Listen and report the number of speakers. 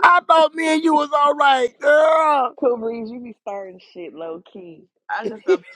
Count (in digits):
2